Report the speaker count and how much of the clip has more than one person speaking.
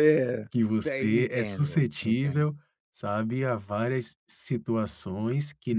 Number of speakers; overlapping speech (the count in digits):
2, about 29%